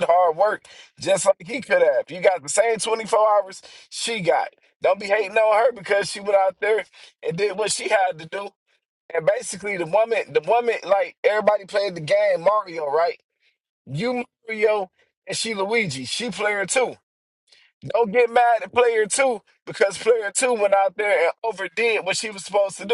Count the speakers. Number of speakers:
one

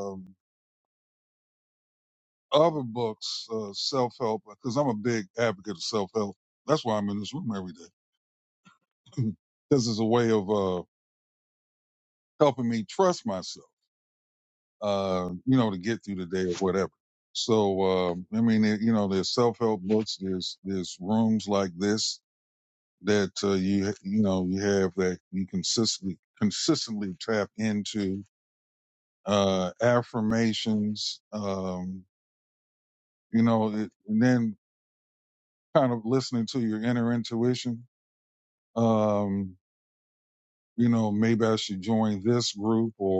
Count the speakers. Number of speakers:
one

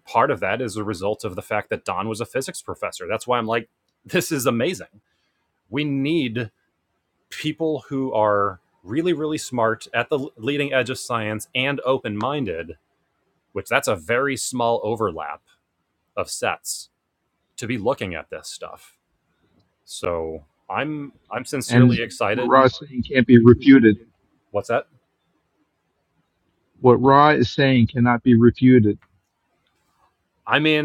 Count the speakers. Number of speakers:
two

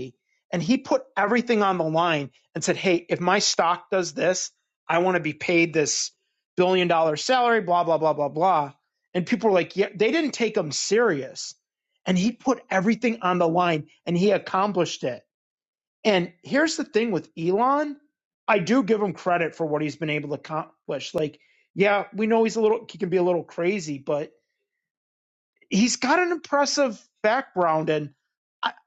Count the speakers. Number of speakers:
one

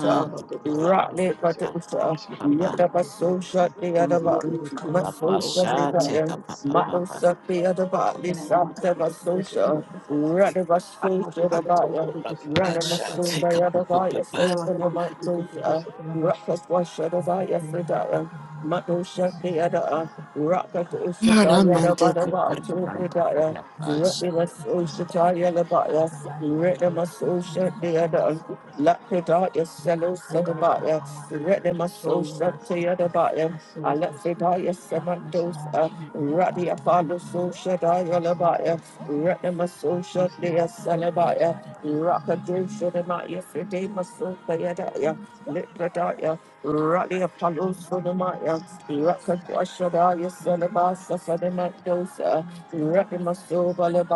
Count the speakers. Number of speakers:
three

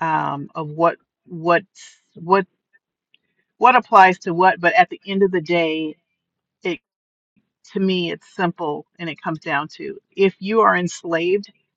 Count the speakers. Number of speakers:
one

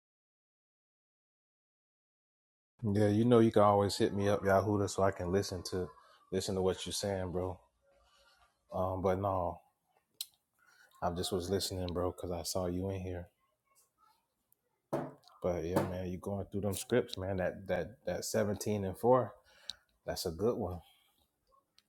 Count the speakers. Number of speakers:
one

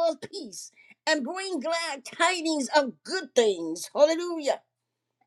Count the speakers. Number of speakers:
one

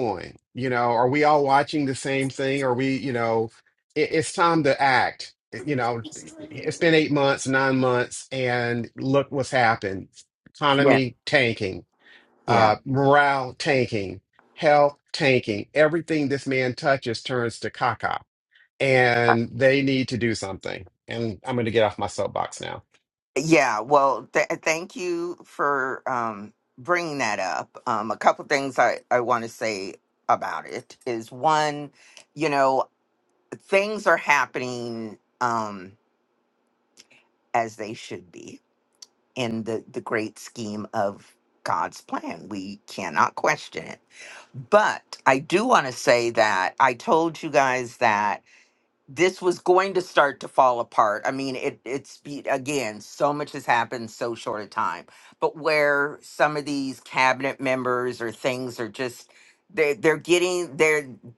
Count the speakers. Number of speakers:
two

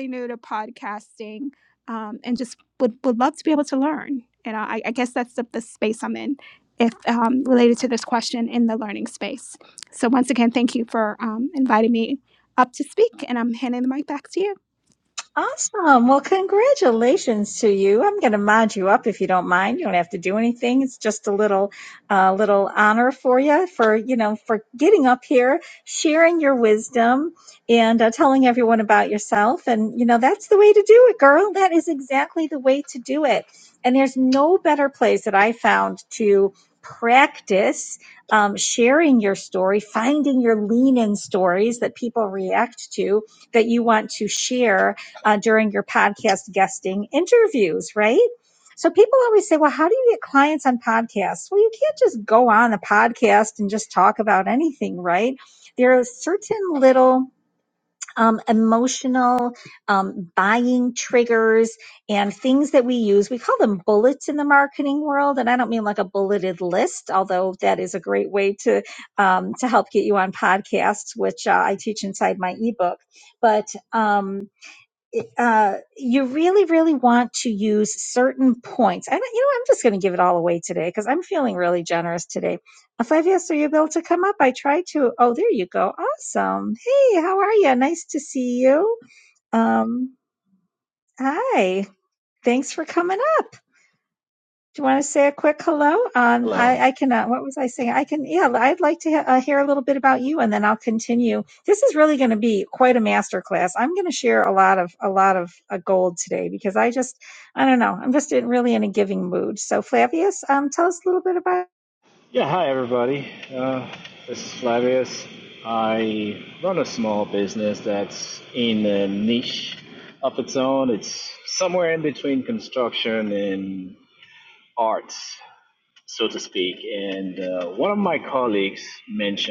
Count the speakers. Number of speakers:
three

